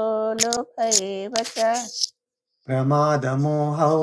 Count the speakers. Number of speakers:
two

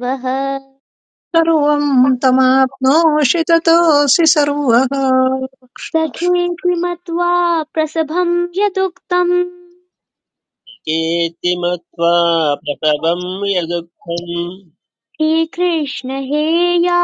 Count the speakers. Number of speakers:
three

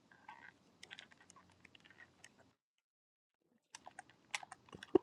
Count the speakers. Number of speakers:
zero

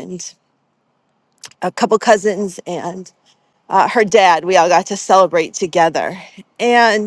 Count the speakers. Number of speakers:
one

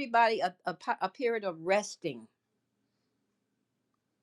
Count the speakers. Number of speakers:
one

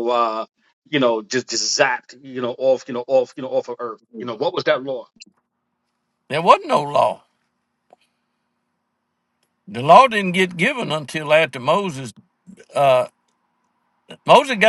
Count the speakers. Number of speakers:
two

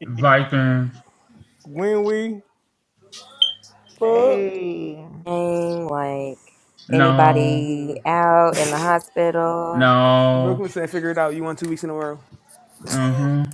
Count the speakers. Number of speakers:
five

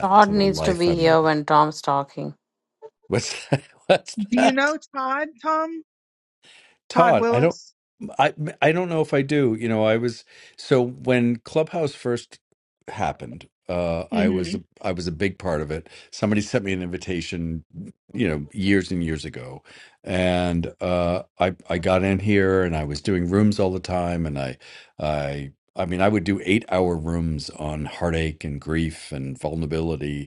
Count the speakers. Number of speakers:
three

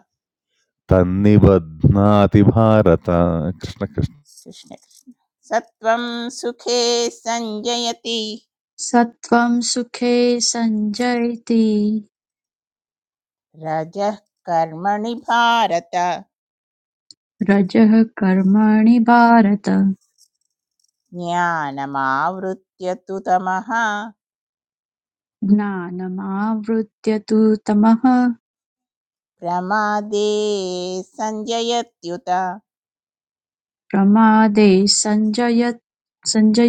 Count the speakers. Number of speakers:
three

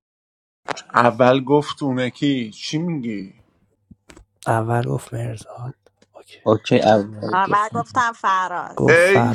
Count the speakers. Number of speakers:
four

